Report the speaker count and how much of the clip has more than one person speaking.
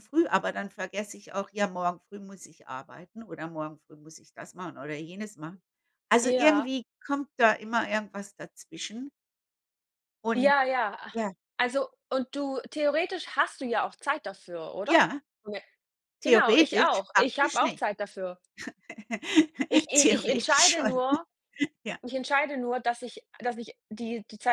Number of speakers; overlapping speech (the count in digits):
2, about 14%